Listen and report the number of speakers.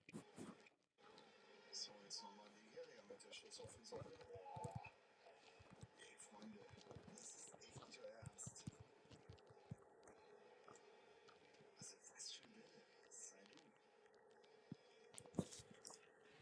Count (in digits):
0